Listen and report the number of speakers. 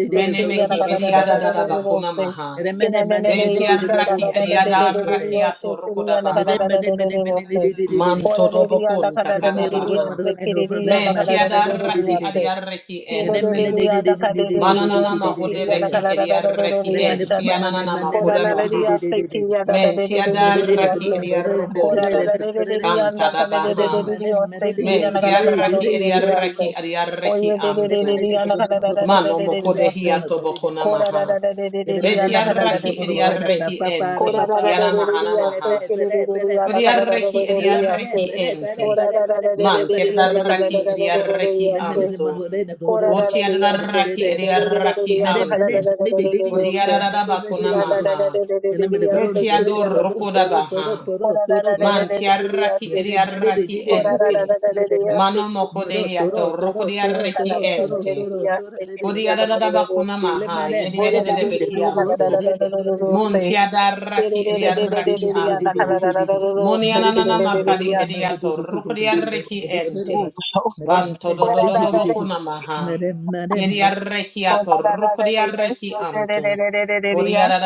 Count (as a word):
three